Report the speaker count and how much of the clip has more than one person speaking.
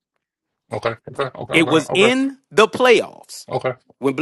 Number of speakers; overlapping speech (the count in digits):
2, about 14%